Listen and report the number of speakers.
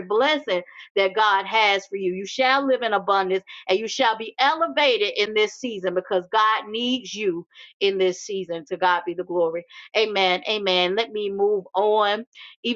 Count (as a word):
one